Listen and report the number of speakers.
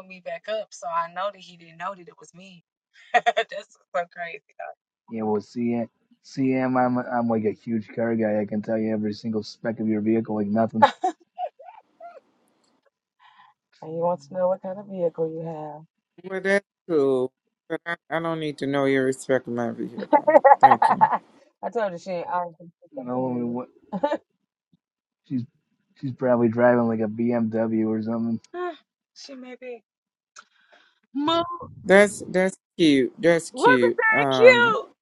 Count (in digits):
3